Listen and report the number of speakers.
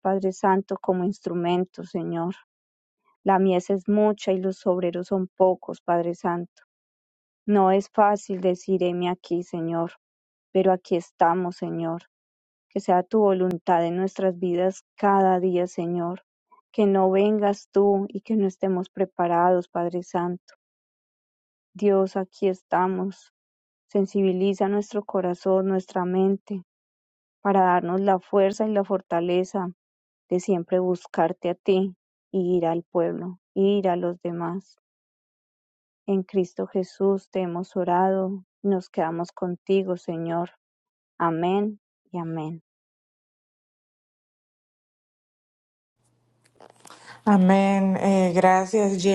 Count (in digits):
2